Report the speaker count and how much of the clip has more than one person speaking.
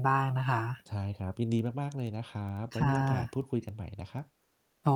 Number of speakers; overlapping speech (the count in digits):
2, about 12%